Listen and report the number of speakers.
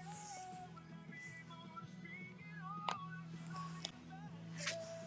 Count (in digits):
0